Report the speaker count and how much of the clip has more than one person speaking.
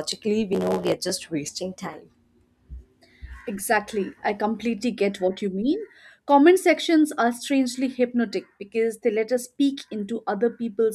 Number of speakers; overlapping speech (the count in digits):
2, no overlap